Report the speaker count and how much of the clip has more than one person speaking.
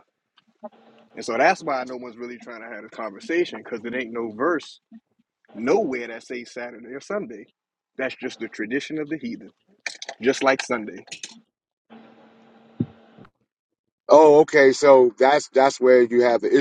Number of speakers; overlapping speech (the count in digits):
2, no overlap